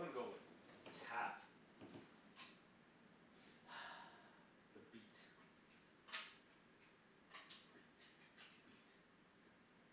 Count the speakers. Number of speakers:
one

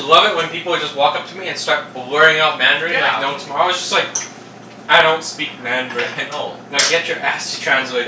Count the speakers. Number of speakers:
two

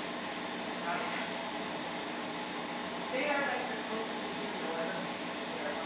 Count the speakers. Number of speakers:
one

